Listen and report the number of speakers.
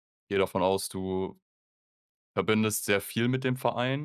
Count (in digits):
1